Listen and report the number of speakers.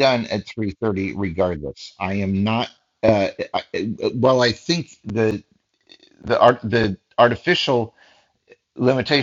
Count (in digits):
1